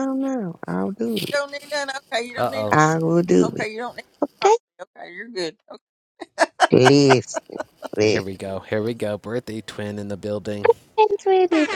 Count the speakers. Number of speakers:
3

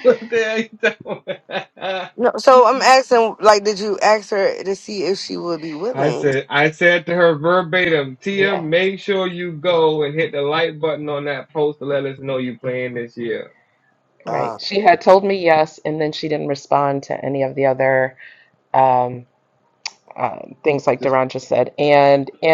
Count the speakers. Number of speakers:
3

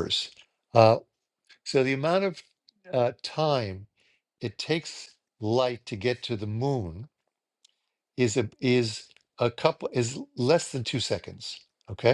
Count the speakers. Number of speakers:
1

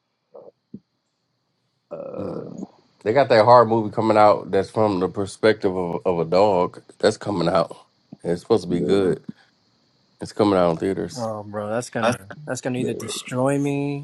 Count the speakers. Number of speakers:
3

